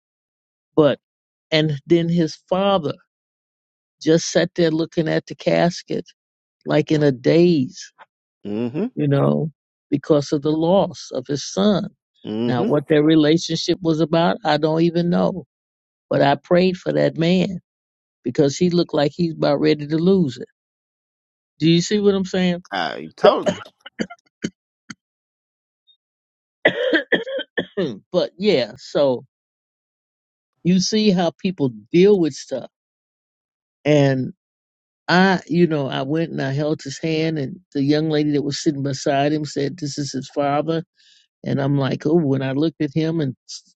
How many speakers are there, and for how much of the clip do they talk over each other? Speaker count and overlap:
2, about 1%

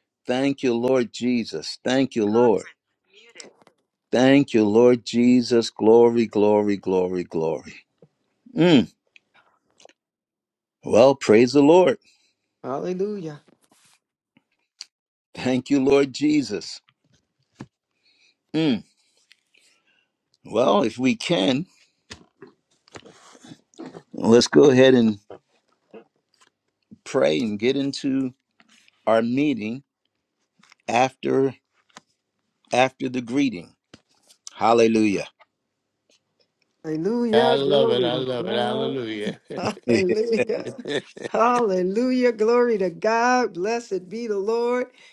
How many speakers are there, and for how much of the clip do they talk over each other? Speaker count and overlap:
3, about 4%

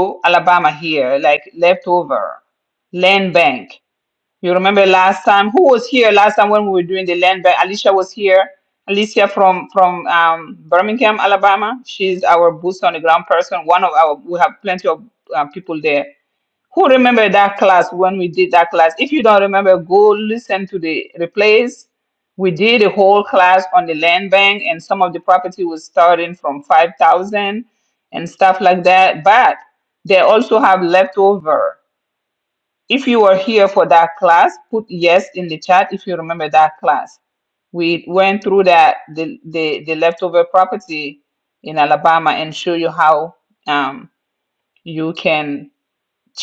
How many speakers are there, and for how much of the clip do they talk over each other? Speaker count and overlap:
1, no overlap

